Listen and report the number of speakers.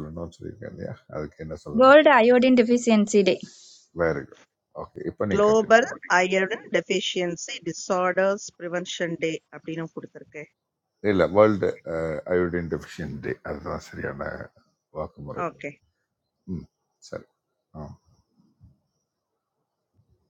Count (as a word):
three